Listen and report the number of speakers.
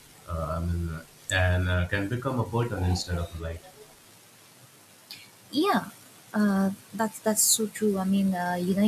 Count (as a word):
two